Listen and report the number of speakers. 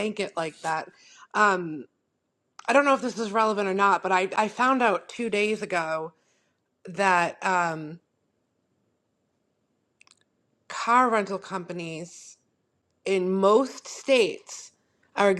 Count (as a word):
one